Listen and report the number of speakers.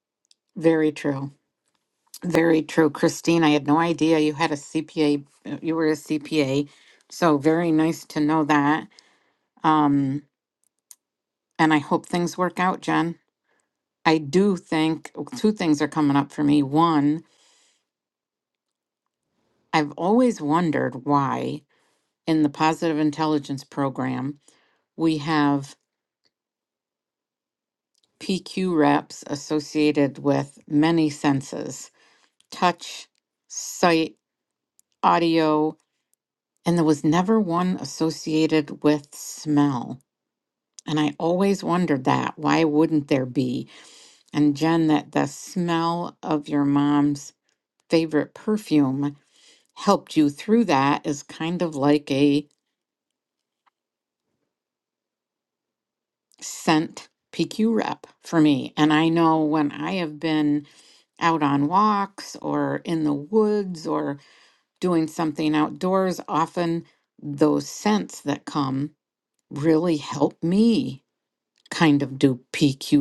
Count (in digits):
1